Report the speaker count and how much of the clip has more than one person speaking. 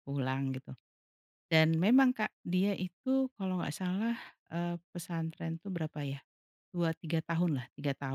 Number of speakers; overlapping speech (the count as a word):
one, no overlap